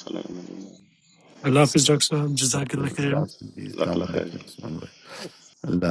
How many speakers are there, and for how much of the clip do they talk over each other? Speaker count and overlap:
3, about 16%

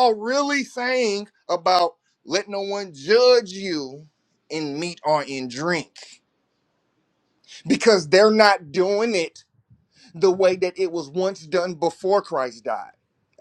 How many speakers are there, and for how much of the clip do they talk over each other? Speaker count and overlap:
1, no overlap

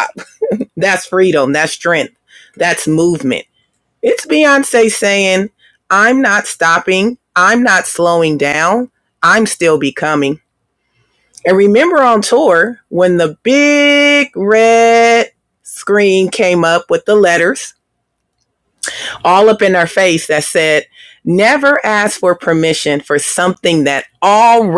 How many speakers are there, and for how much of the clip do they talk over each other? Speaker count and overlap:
1, no overlap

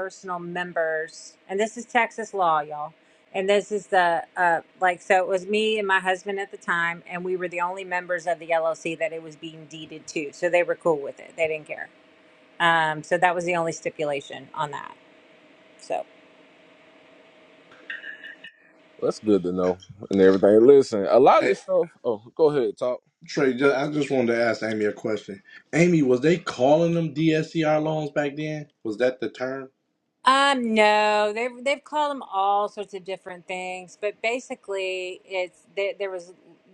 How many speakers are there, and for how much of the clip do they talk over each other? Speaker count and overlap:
3, about 1%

